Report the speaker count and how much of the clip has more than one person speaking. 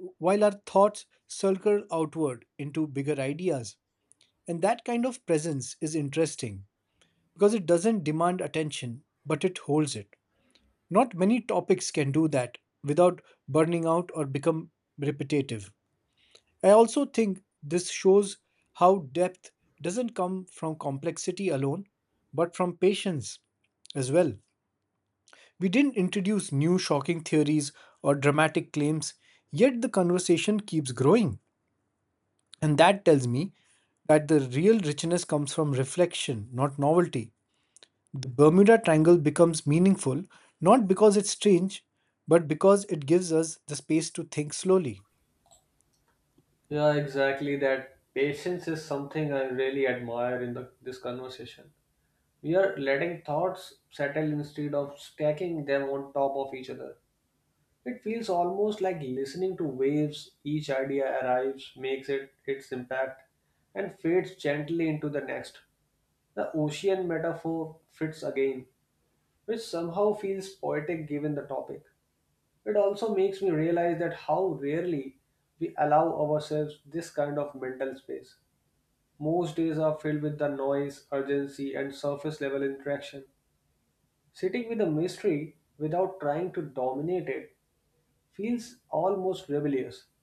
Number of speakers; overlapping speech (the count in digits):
2, no overlap